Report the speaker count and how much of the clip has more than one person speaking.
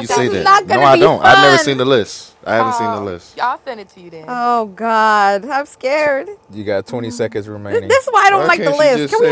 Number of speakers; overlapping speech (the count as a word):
four, about 45%